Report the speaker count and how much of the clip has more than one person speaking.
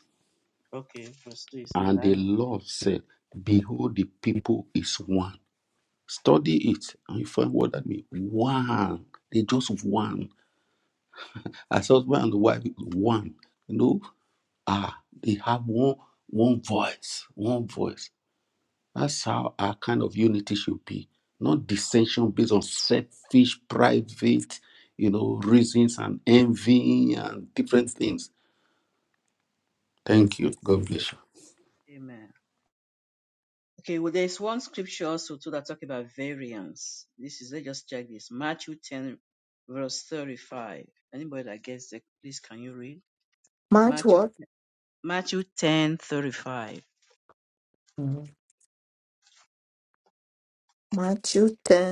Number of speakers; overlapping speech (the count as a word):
three, about 2%